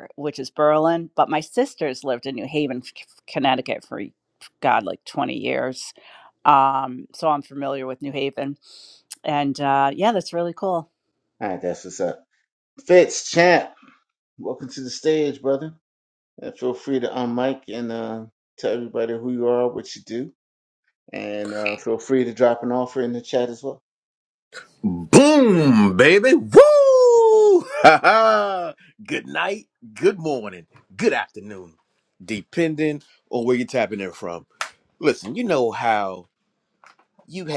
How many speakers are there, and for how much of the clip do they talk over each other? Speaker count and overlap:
3, no overlap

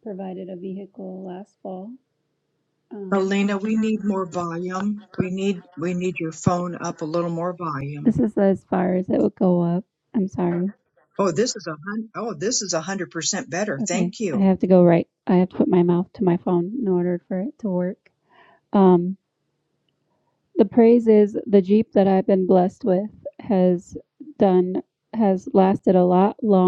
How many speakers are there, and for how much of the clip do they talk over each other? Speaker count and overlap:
2, about 3%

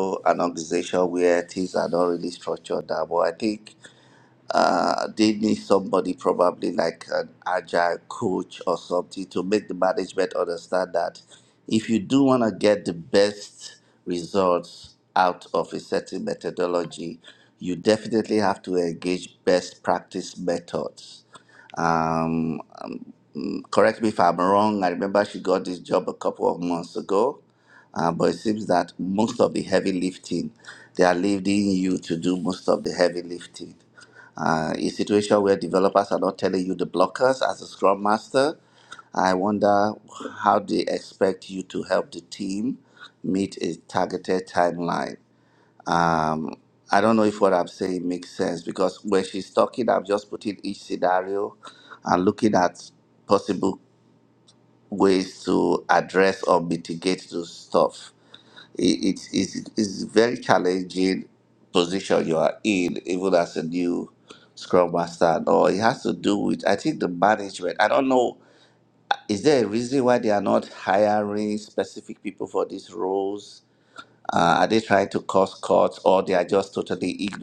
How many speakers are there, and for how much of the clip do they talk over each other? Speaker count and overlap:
1, no overlap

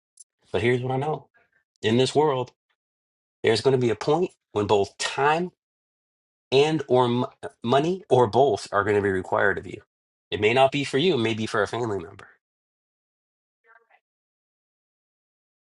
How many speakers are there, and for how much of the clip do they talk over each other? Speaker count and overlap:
1, no overlap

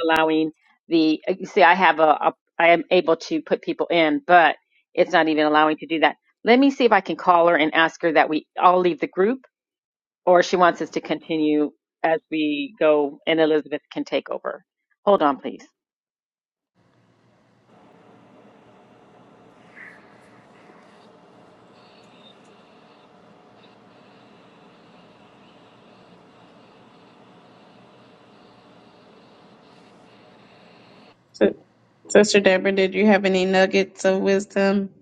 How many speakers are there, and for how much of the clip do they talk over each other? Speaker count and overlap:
2, no overlap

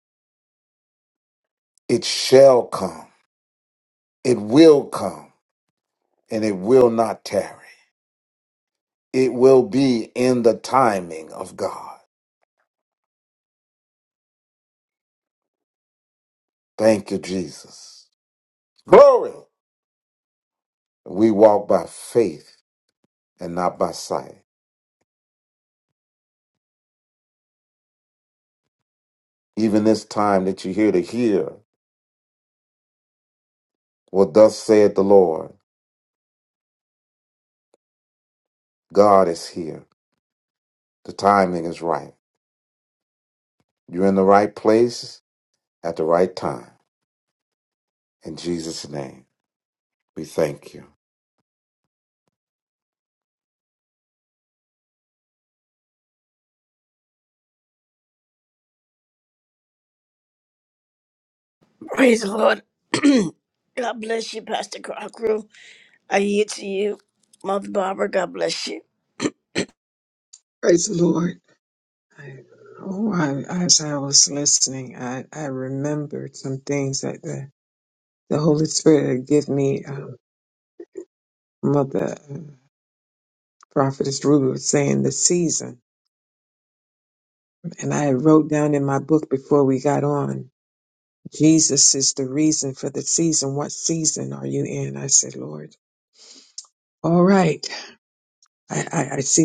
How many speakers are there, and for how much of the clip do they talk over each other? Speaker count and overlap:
3, no overlap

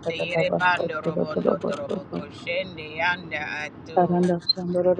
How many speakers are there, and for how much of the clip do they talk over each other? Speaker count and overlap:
2, about 42%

